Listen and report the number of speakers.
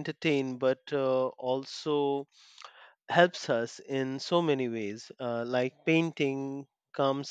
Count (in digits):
1